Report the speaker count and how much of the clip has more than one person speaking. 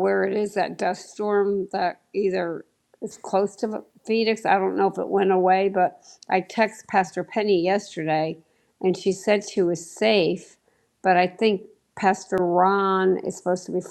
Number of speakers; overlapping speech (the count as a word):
one, no overlap